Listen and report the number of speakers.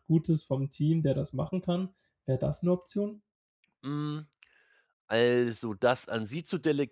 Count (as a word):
two